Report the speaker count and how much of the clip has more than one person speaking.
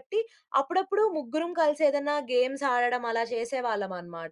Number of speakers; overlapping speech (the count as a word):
one, no overlap